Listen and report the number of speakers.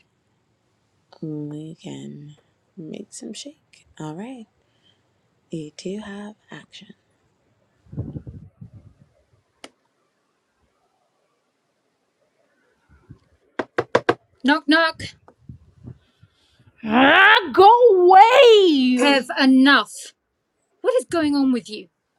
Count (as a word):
three